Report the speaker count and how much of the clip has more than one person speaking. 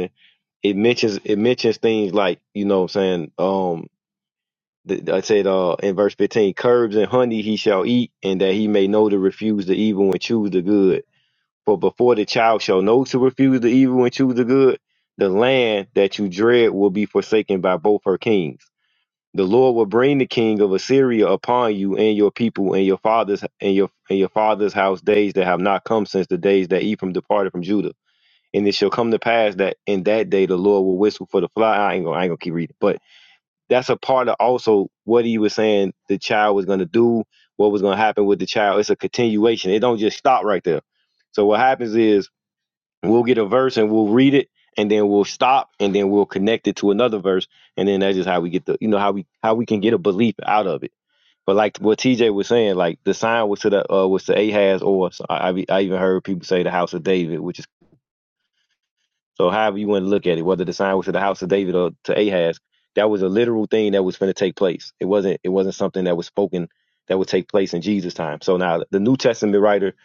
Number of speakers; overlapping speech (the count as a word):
one, no overlap